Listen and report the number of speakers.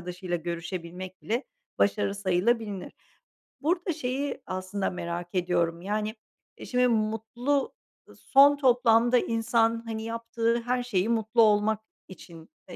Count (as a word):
one